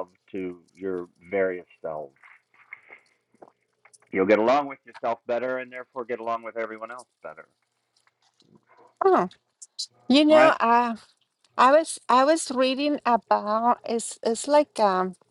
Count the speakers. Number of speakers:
two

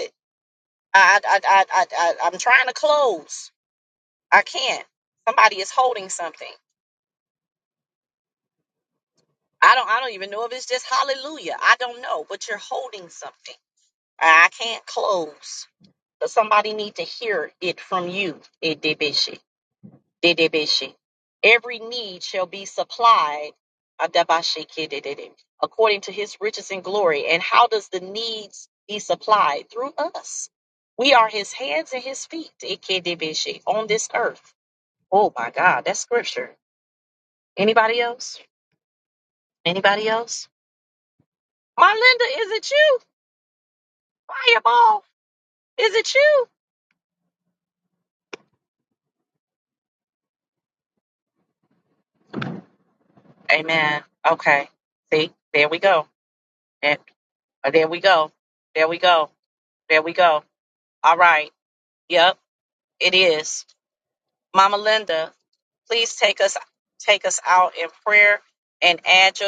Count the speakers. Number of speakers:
one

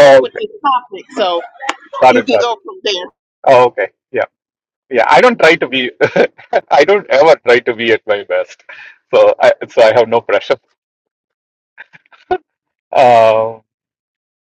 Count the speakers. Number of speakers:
two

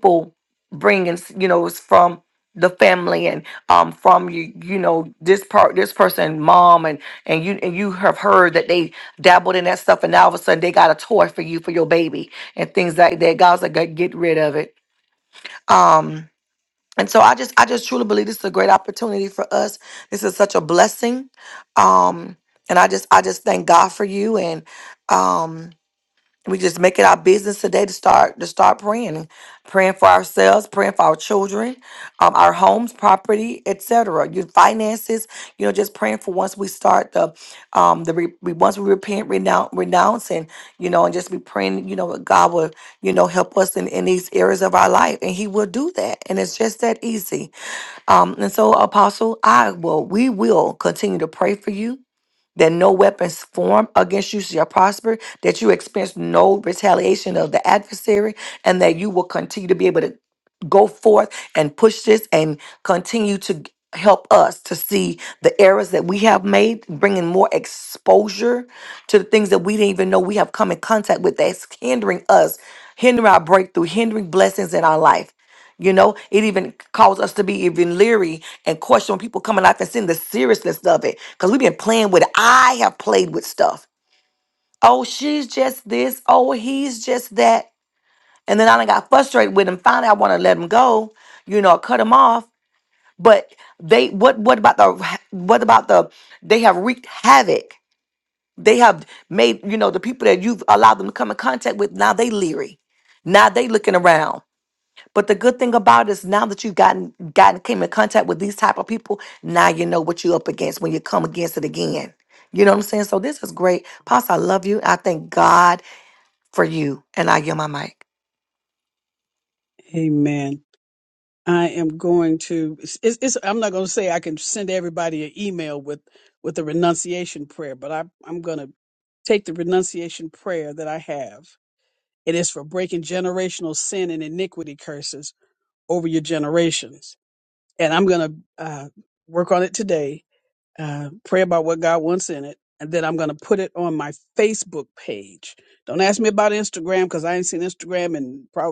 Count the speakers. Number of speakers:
two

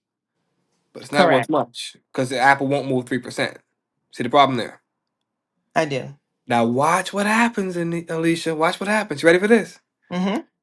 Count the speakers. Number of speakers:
two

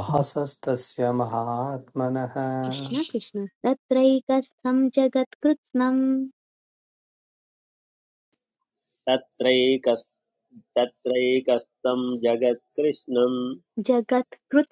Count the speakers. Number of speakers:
three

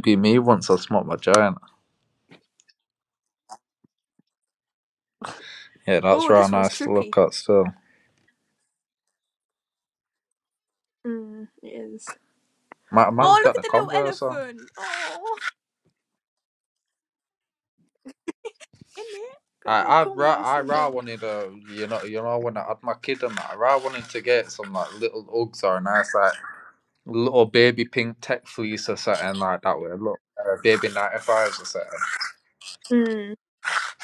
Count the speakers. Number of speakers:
two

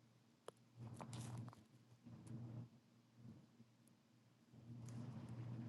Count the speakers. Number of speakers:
zero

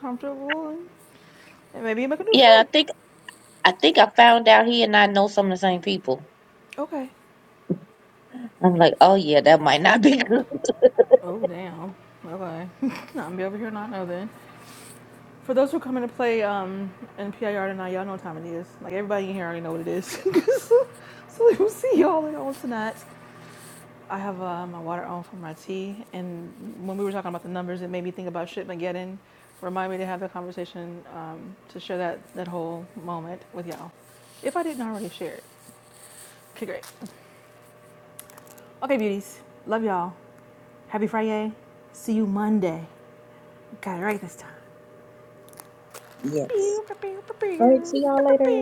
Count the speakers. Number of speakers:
three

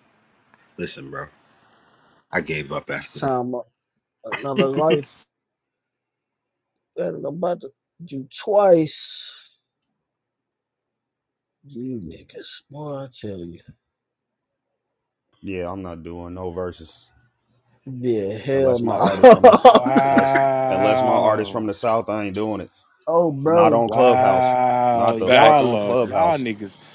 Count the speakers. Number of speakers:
four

